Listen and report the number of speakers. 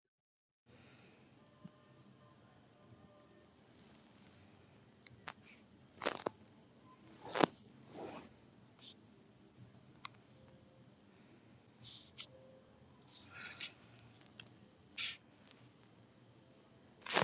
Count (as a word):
zero